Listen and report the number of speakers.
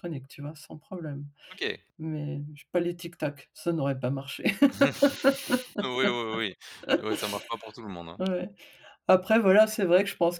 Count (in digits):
2